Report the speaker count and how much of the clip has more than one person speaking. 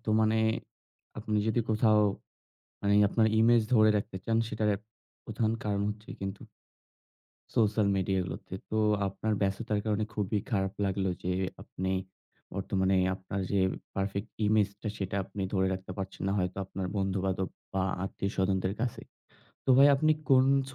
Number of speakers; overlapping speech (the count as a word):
one, no overlap